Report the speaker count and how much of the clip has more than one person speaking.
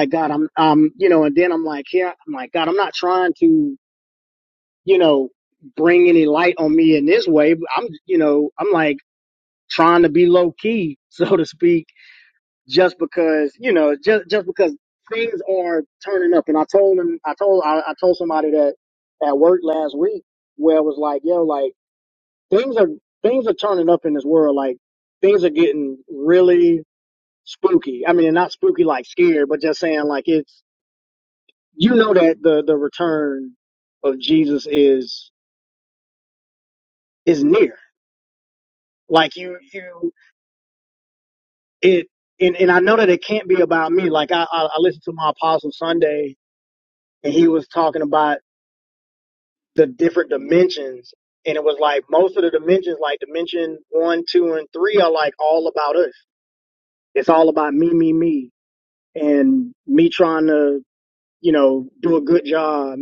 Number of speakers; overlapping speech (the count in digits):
1, no overlap